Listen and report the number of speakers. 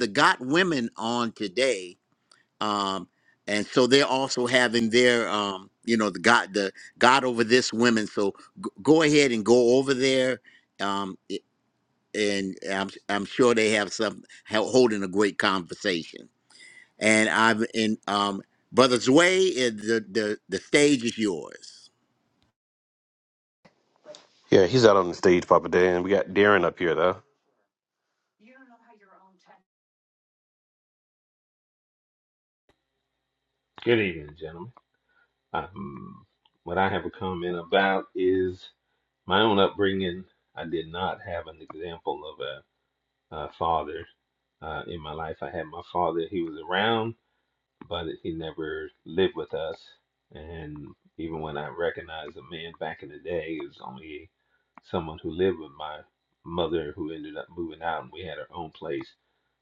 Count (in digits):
3